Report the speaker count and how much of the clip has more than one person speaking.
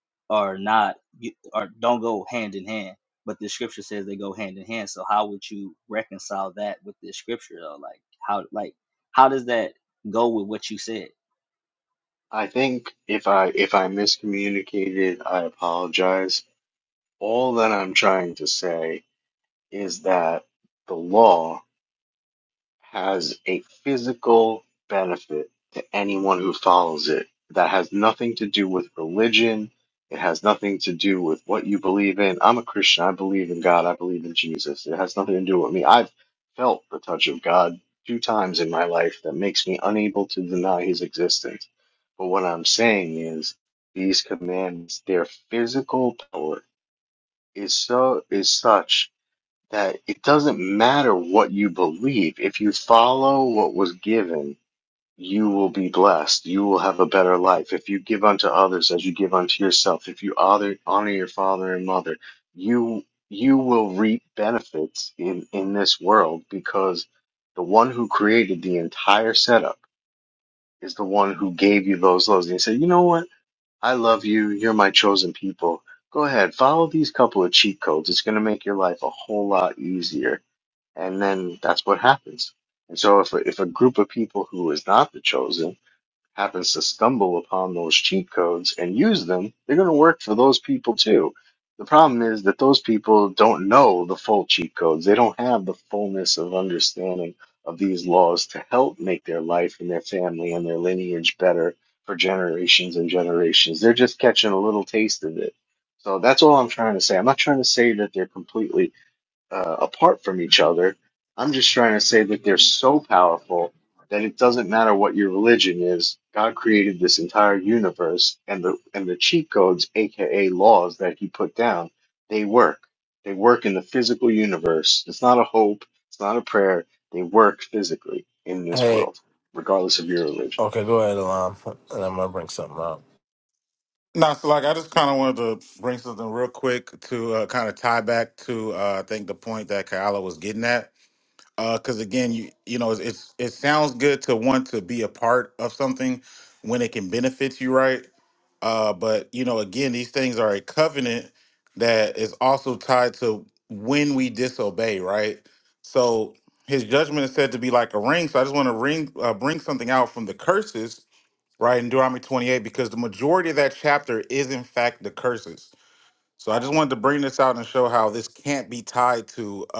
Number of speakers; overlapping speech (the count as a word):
four, under 1%